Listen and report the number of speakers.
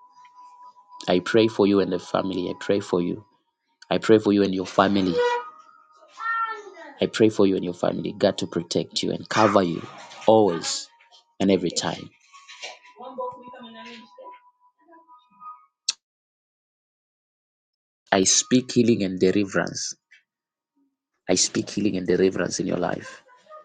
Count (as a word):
one